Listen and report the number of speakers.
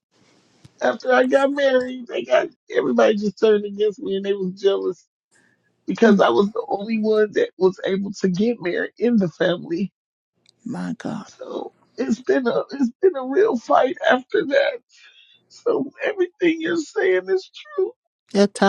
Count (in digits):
2